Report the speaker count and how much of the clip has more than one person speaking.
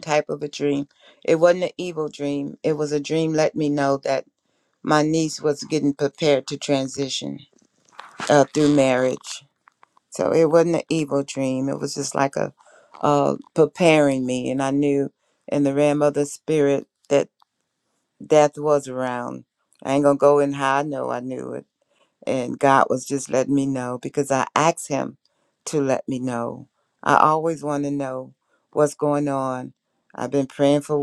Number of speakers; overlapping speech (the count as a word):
one, no overlap